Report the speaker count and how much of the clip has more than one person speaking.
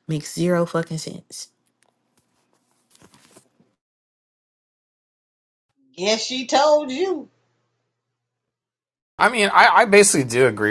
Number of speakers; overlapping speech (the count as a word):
three, no overlap